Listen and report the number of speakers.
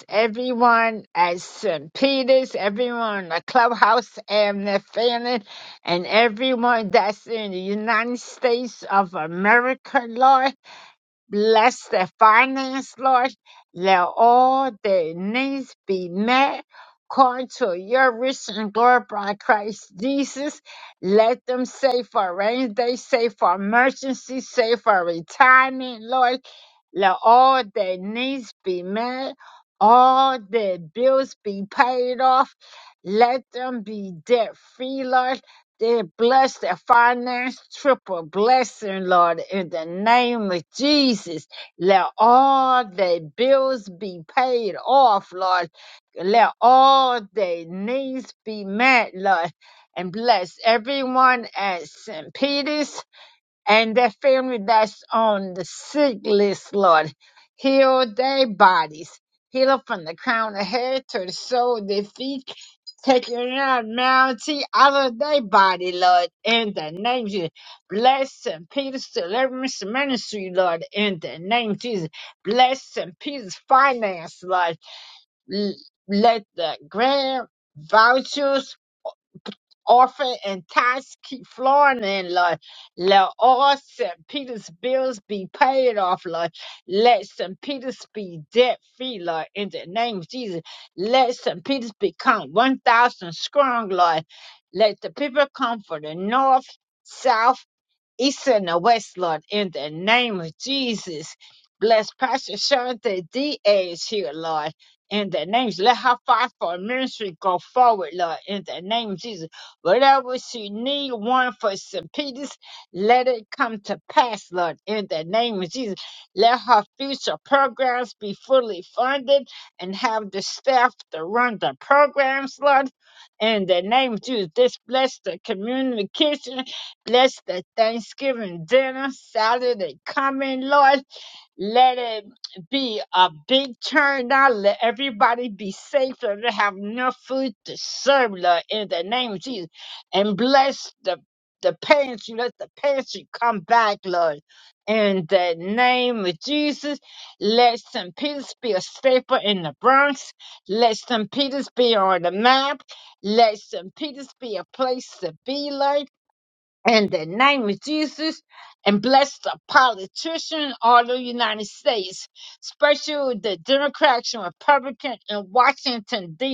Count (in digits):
1